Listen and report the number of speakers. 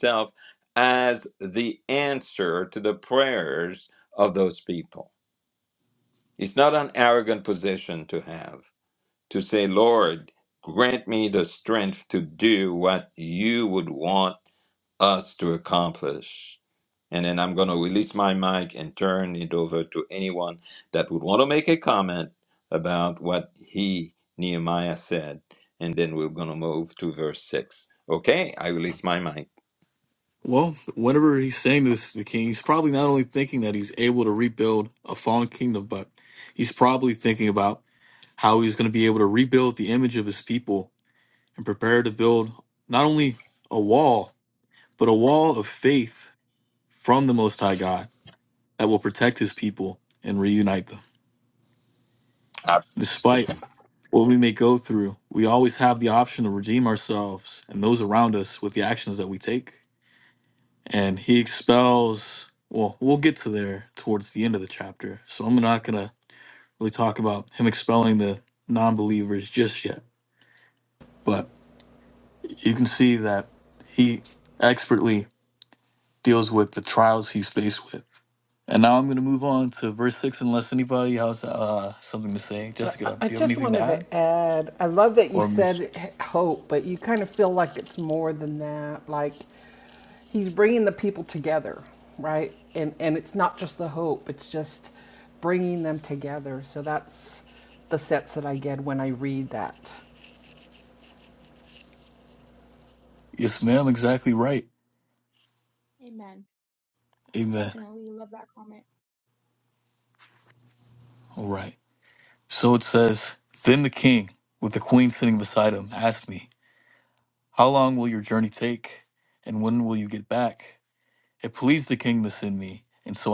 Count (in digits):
4